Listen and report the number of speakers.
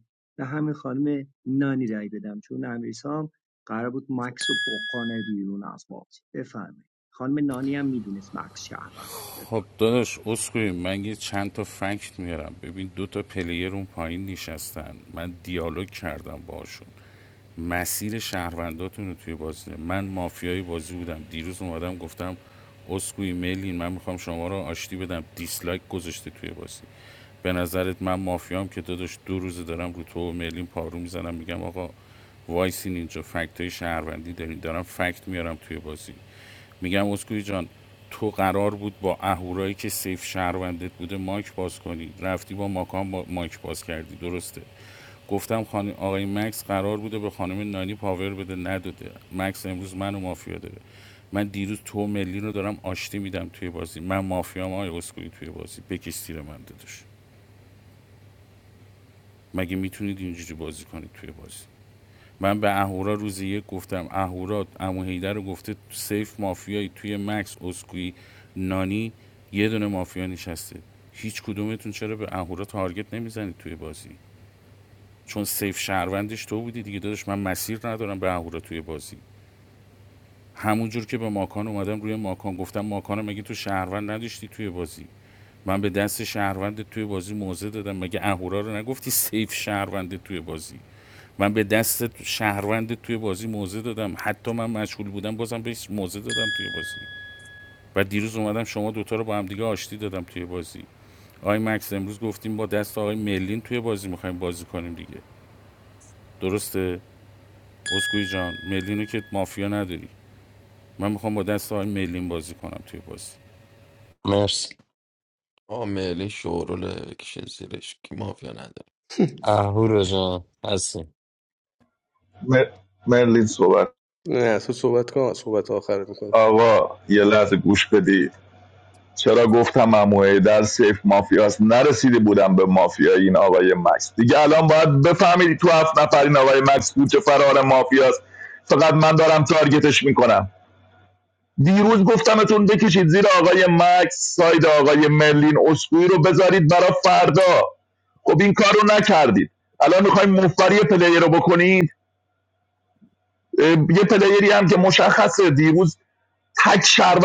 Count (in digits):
6